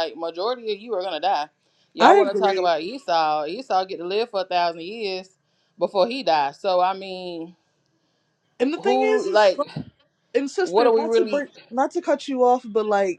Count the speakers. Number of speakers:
2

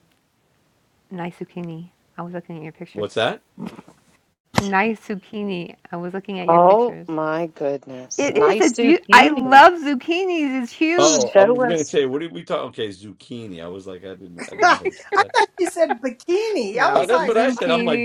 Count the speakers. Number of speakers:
4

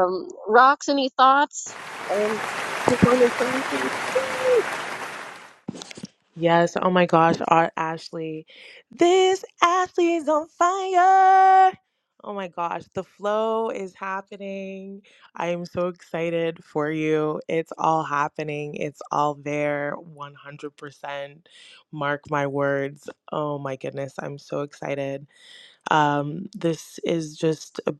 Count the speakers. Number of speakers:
2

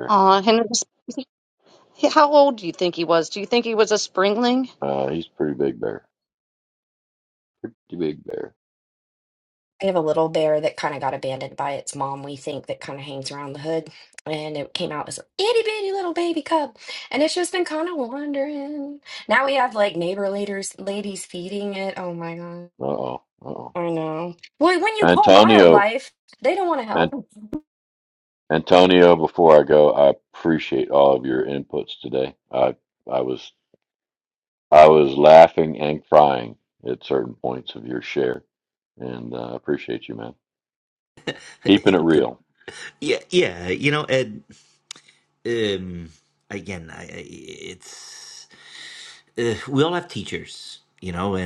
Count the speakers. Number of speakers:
4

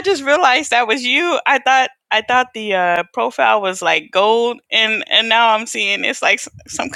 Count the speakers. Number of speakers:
1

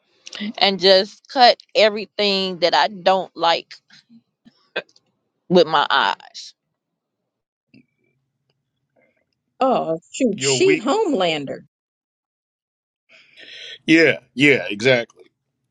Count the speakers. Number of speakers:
3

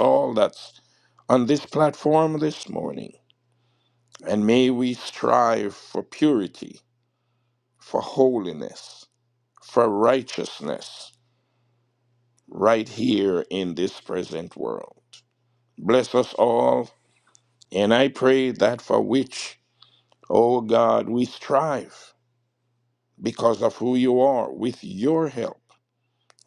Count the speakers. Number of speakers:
1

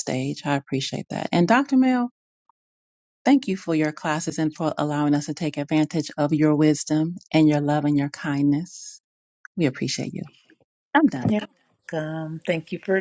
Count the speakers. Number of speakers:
2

